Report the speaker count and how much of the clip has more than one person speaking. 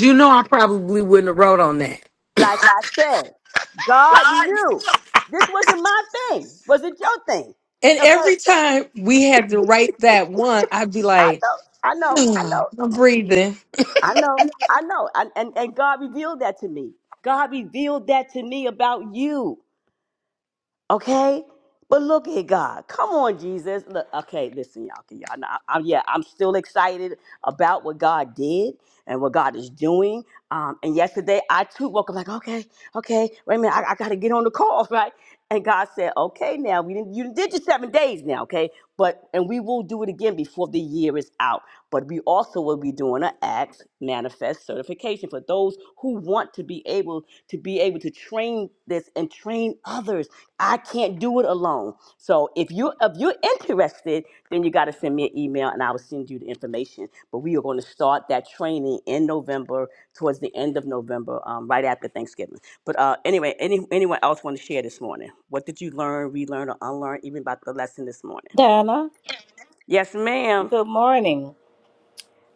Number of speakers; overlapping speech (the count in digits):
3, about 1%